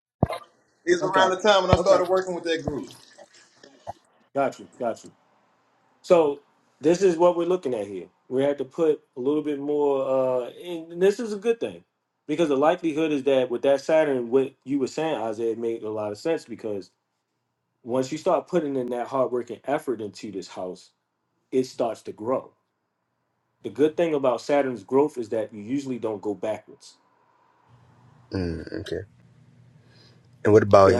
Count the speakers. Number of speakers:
three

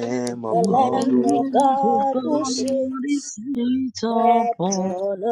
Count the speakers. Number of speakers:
three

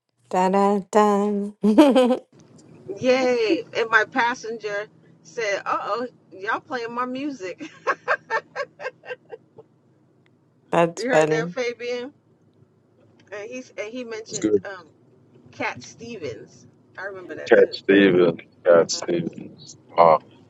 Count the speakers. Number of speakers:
three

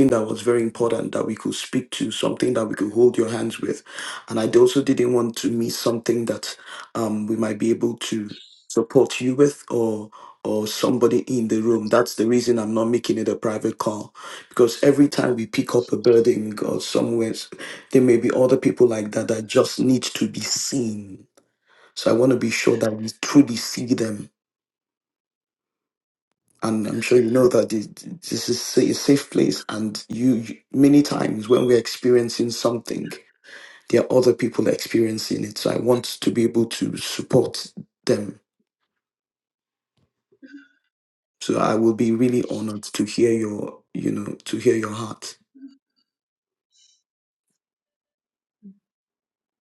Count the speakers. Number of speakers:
one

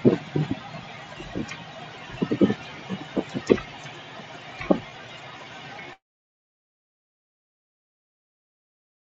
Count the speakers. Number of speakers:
zero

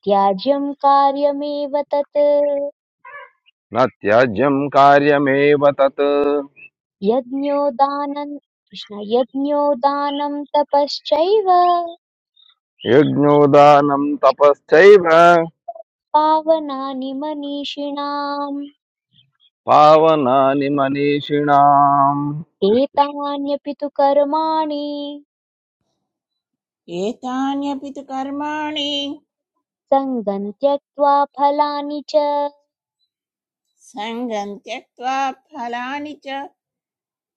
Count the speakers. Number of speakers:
three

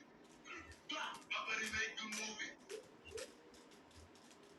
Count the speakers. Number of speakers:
zero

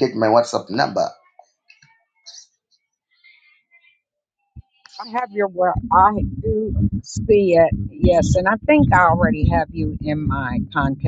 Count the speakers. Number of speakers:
two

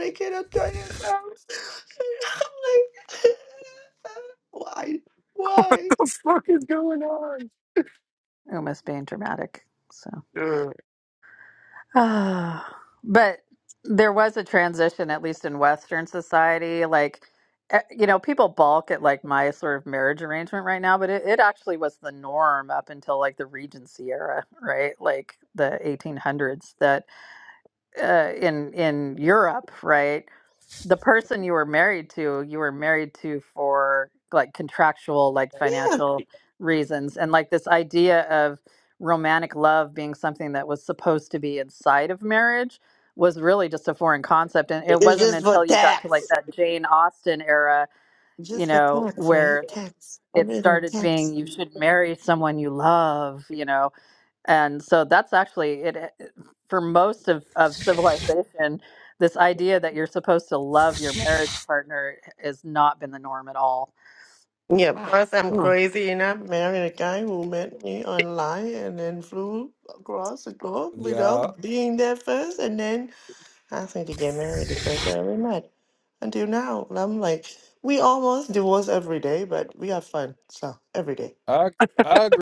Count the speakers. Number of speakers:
four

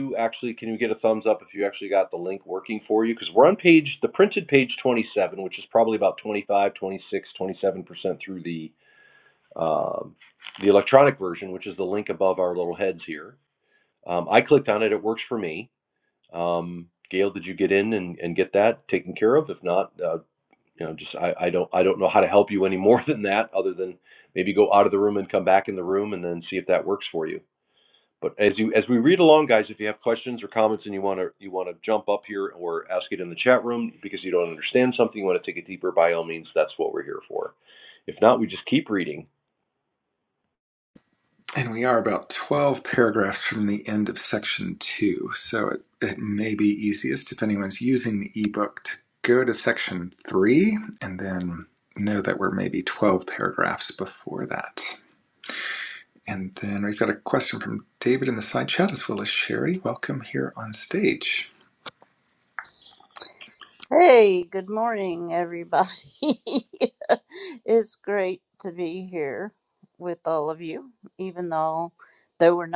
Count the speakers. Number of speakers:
three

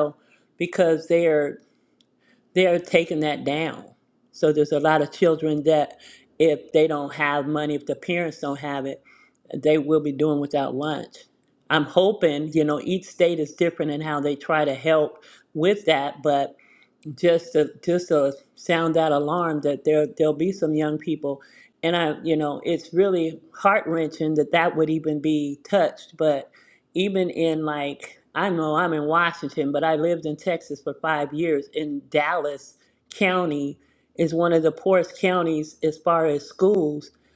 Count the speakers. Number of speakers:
one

